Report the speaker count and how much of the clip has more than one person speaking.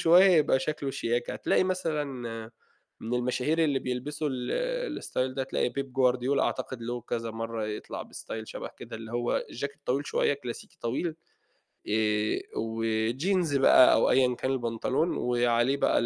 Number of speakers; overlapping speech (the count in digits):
1, no overlap